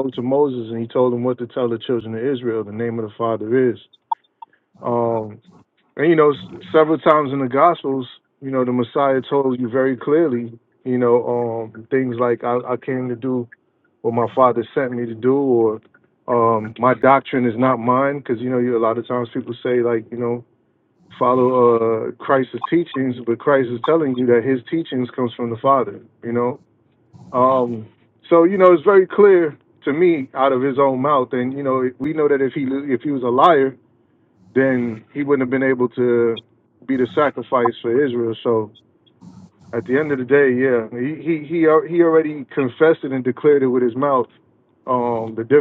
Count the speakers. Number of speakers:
1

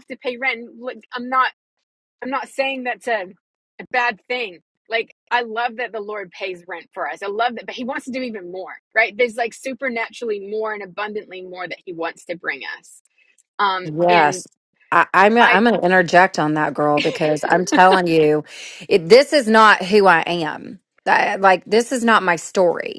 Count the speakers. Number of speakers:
2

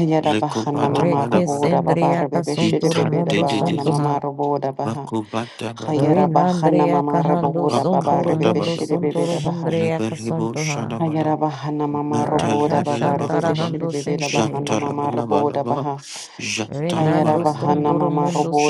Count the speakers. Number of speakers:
3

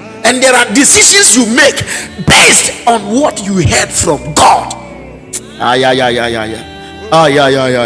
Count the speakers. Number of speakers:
1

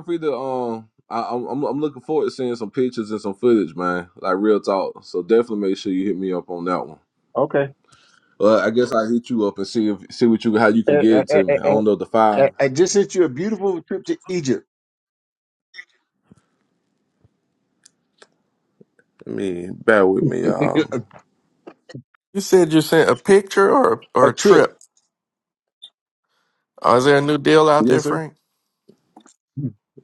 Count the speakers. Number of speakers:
3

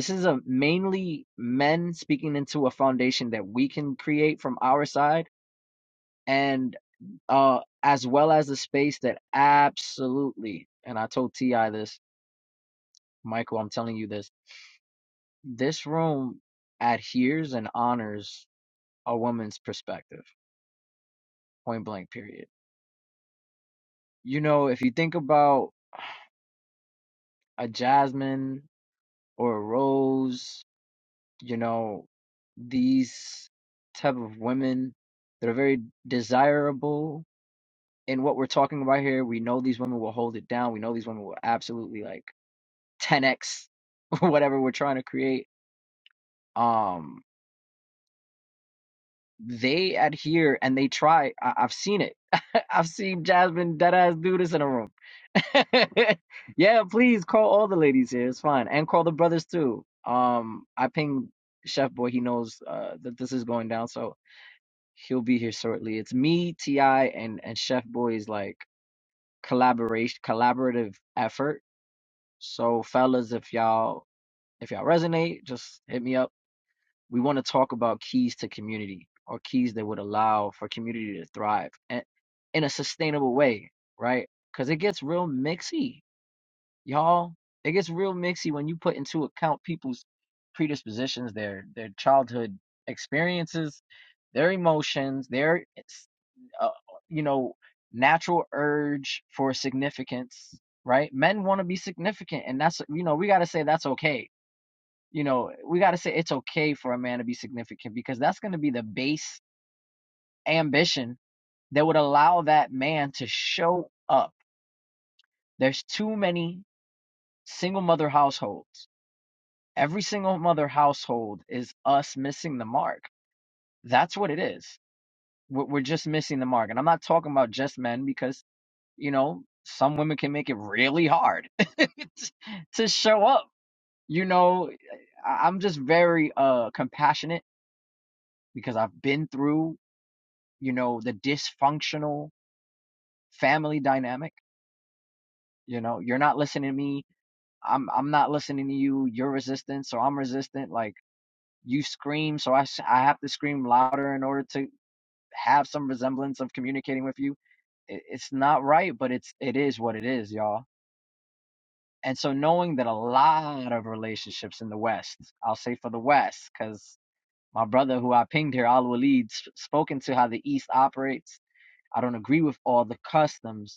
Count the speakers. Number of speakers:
1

